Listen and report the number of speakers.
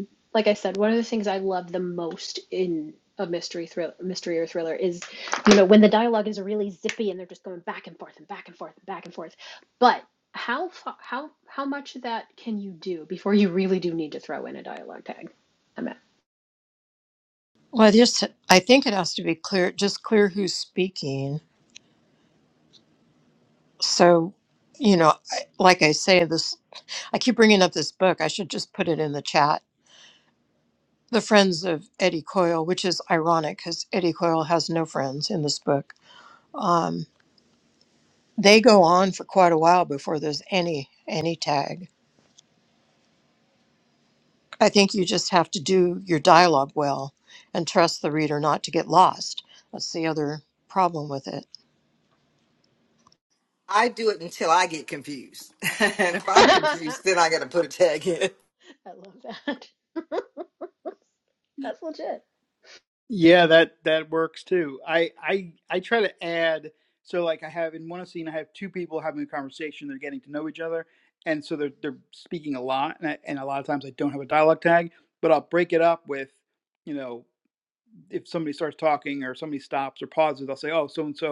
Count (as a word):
four